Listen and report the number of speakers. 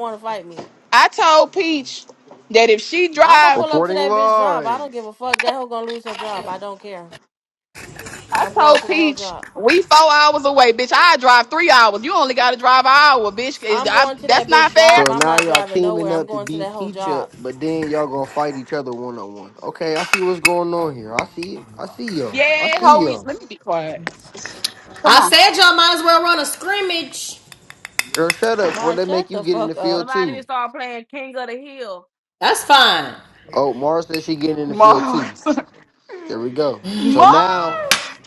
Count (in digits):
5